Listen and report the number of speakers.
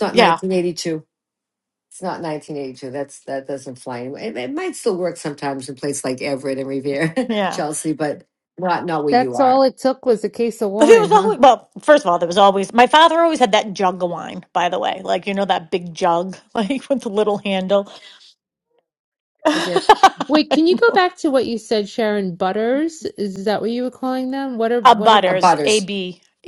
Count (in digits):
3